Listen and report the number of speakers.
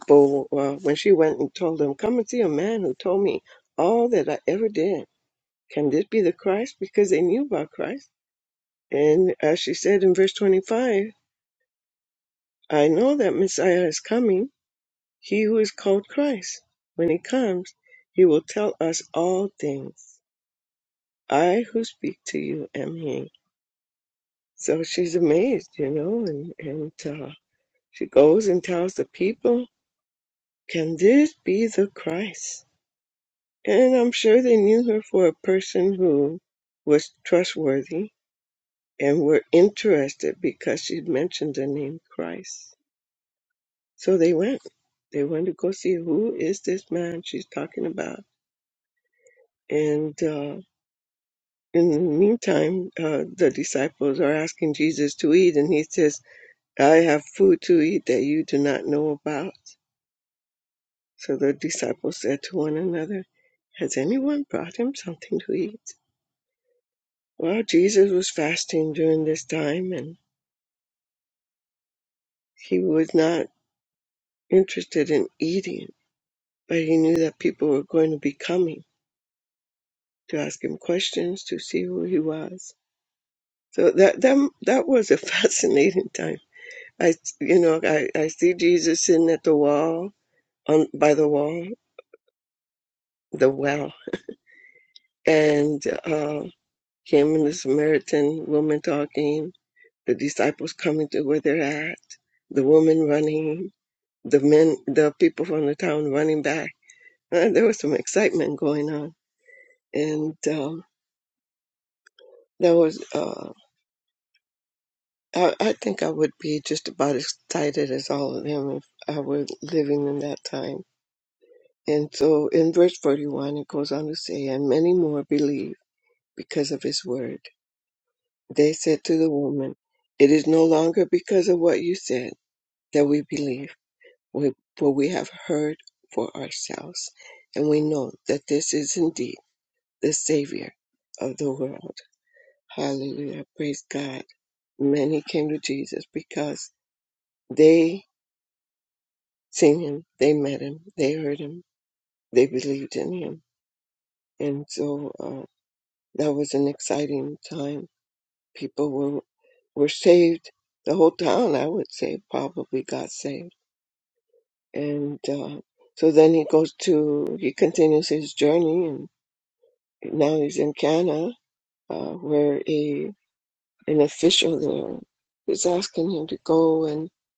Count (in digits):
1